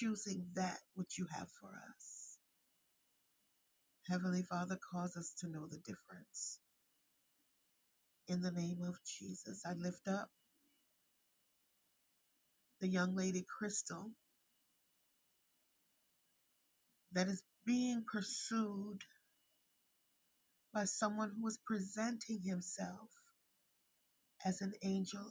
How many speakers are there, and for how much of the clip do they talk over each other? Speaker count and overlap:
1, no overlap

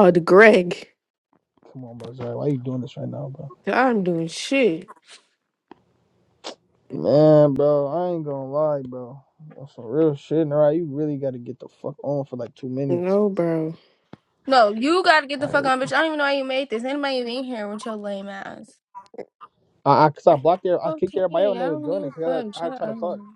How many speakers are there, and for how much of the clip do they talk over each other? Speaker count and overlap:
3, about 11%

